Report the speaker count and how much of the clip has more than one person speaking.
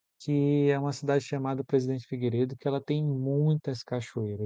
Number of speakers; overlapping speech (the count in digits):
1, no overlap